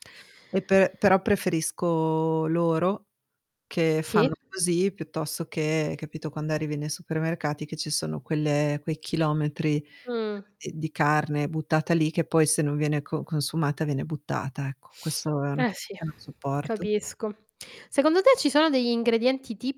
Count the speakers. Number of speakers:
two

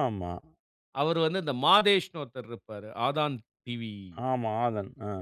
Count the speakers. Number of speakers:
two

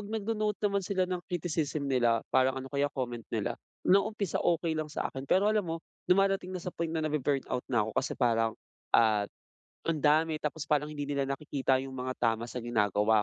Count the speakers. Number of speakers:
one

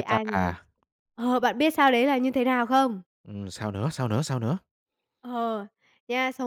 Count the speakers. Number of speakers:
two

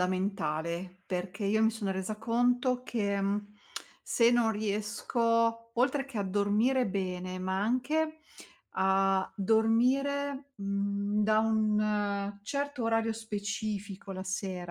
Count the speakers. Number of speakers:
one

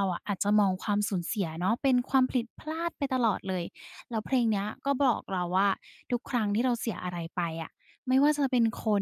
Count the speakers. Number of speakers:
one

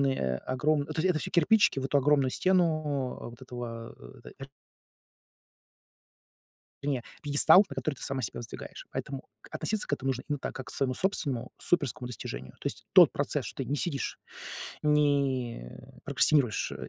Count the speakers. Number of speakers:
one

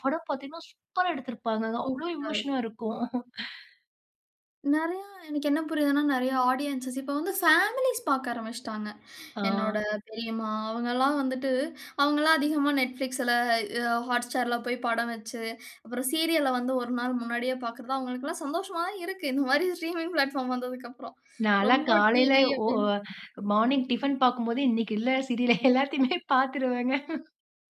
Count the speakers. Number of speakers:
two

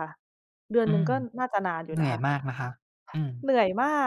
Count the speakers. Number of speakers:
two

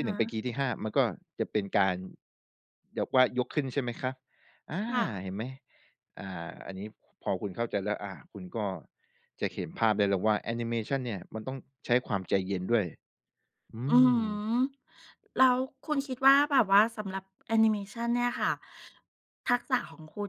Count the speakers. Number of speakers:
two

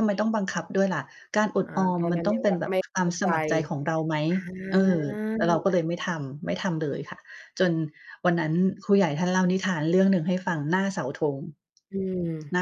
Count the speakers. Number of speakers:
two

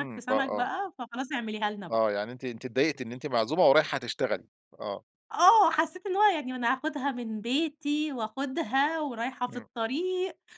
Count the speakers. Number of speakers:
two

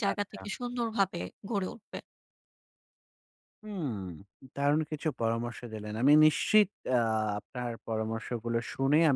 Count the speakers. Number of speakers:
two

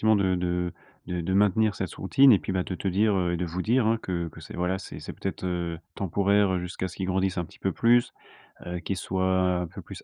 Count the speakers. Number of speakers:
one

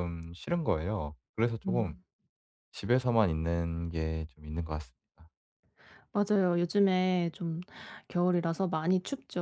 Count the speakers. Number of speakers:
two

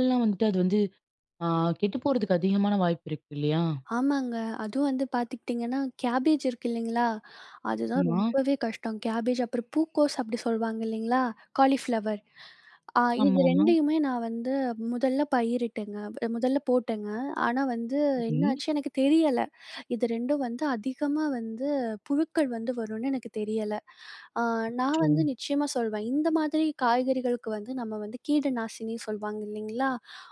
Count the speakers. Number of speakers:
two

